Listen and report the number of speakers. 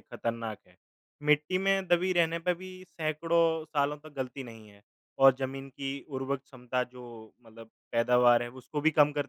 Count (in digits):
1